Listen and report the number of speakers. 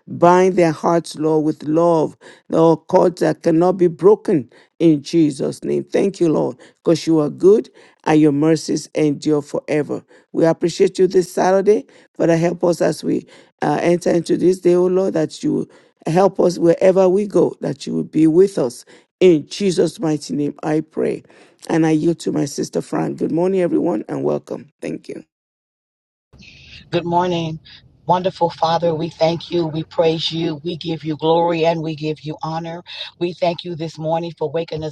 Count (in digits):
2